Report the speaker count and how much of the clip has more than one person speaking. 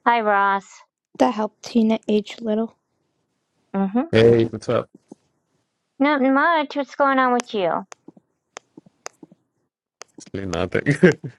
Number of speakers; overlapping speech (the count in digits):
3, no overlap